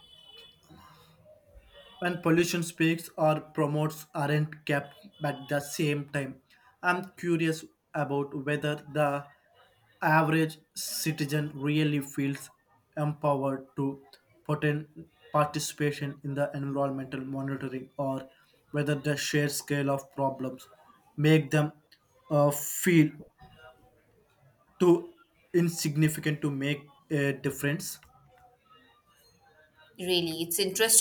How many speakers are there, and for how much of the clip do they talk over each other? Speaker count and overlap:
2, no overlap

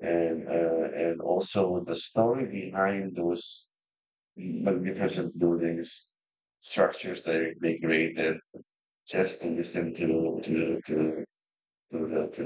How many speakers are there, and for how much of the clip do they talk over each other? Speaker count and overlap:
1, no overlap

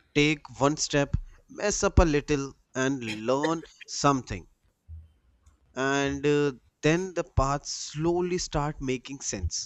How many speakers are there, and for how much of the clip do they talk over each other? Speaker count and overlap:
1, no overlap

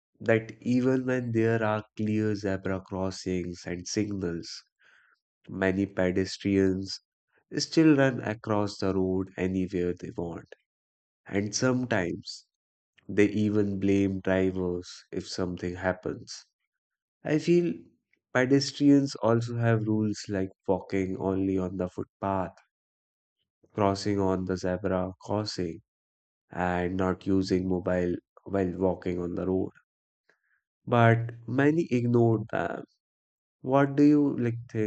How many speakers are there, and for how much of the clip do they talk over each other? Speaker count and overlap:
1, no overlap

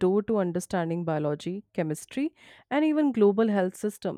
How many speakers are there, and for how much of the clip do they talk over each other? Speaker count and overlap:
1, no overlap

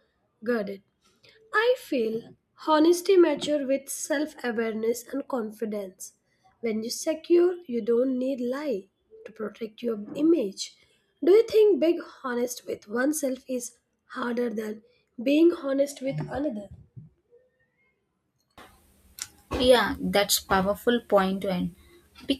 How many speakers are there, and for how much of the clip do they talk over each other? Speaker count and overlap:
2, no overlap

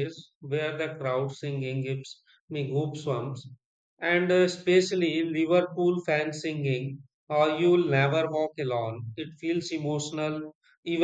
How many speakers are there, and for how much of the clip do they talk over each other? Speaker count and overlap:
1, no overlap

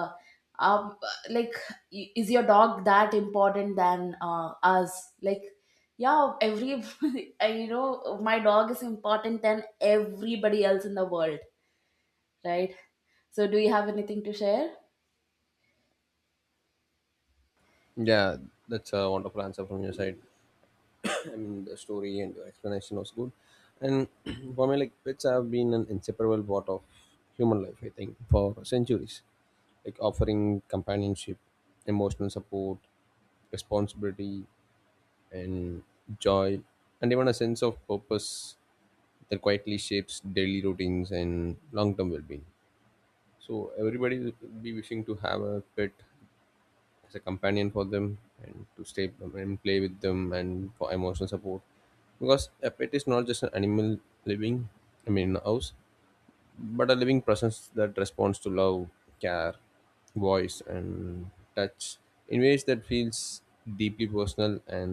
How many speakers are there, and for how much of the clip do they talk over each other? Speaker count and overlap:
2, no overlap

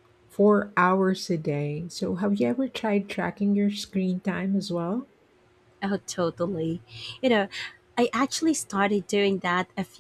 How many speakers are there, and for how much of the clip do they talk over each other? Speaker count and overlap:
2, no overlap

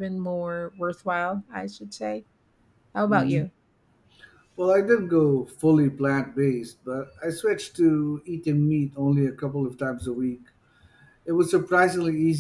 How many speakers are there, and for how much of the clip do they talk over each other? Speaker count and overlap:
2, about 3%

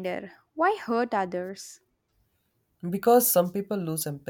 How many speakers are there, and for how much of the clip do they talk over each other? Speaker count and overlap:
2, no overlap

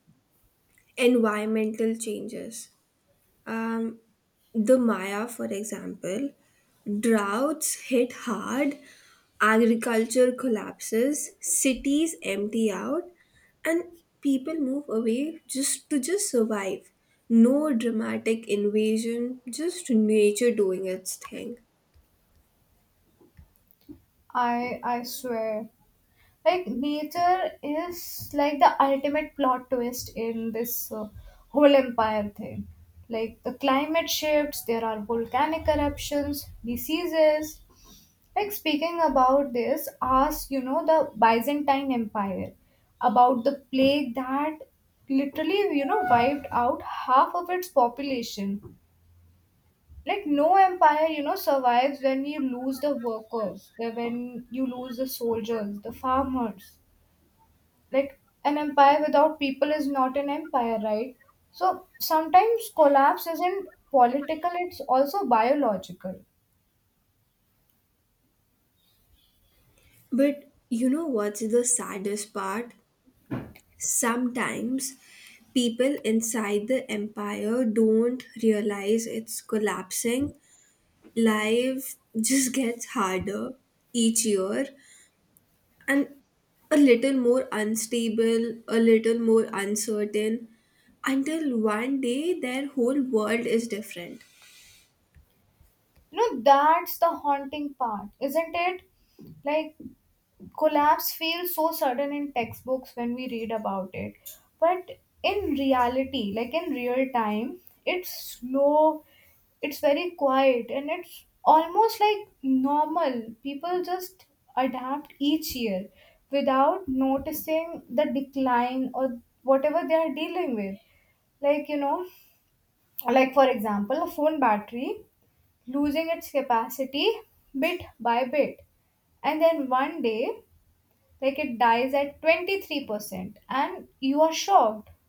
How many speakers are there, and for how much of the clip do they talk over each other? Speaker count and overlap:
2, no overlap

